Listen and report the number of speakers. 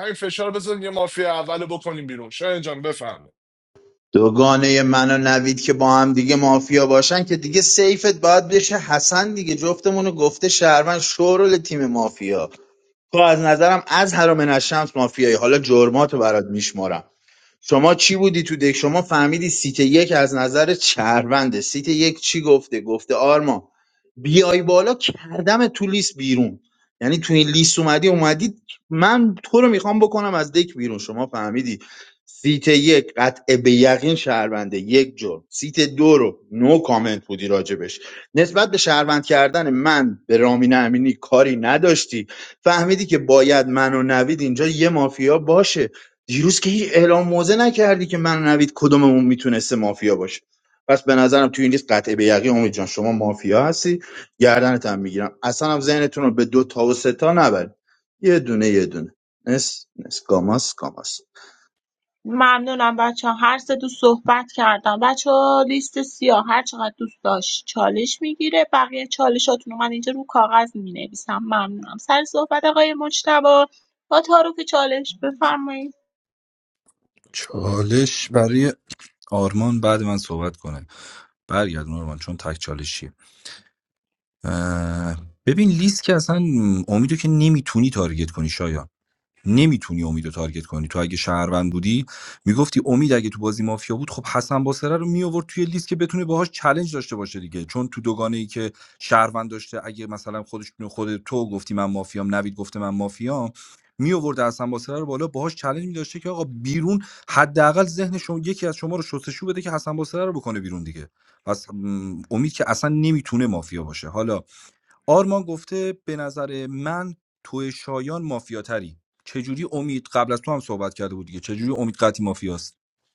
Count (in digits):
4